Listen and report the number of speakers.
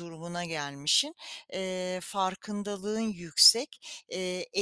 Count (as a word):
one